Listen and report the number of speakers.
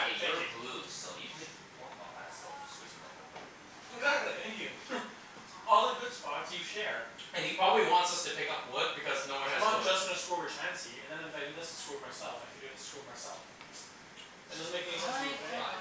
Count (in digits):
3